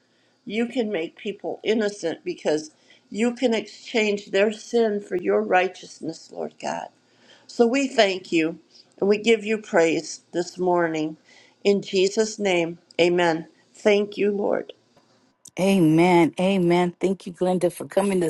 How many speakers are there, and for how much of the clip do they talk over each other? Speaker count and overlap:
2, no overlap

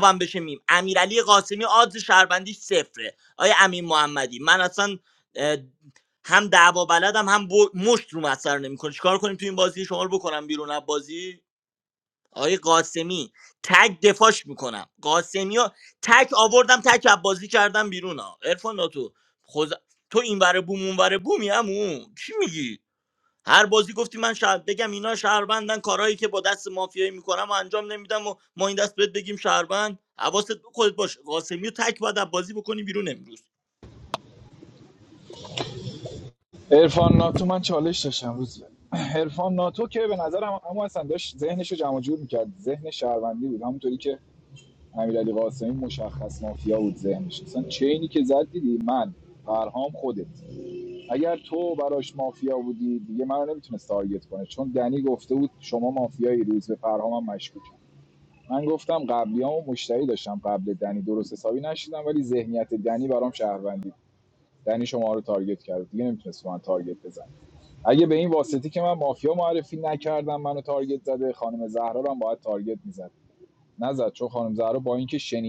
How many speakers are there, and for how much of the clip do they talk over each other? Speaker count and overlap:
2, no overlap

